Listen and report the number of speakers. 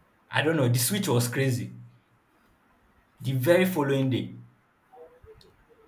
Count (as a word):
one